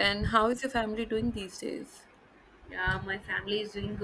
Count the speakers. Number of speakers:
2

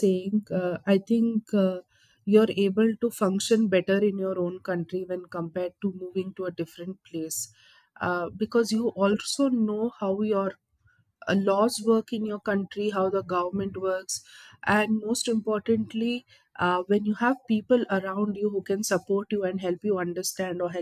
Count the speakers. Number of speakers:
1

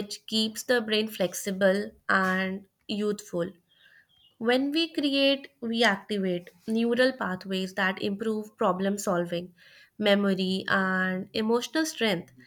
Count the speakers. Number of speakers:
1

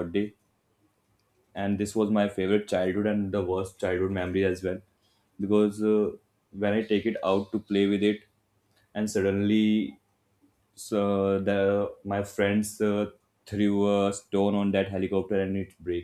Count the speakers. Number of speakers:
1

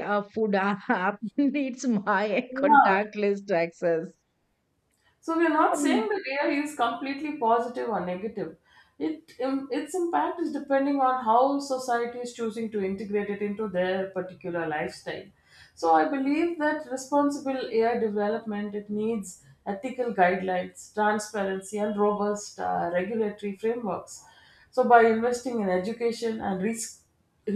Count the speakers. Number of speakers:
2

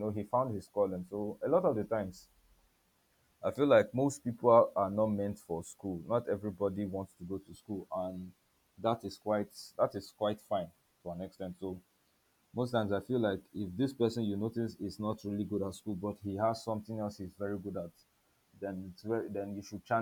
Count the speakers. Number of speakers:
1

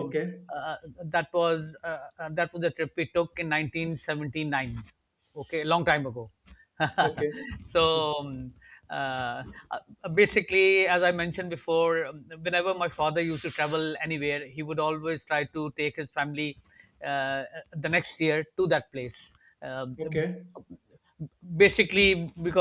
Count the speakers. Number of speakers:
2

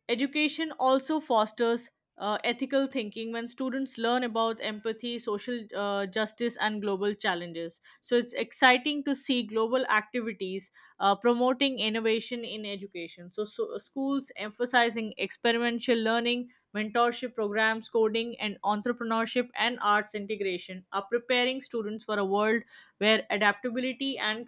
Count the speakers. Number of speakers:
1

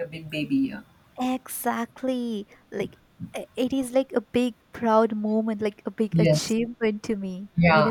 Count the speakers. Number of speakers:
2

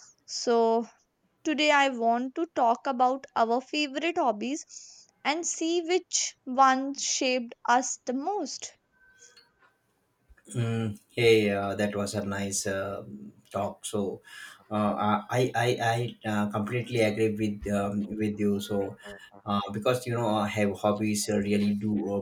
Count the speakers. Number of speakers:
2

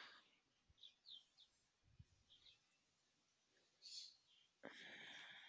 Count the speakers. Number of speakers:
0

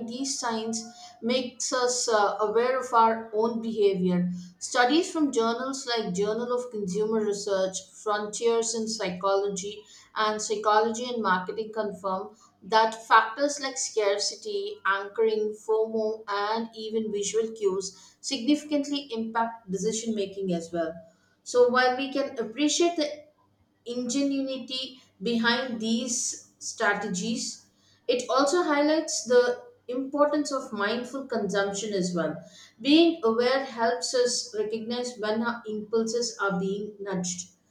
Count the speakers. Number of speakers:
1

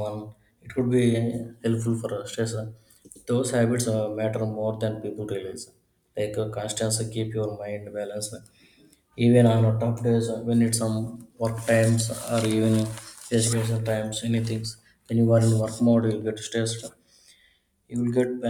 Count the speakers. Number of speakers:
1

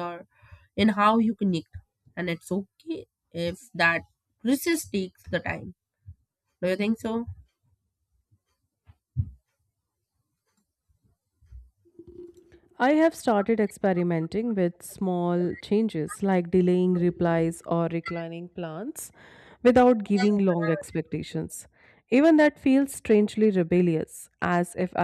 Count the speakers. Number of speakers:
2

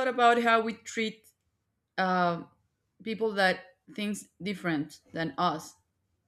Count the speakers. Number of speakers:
1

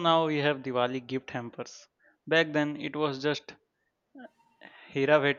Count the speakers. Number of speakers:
1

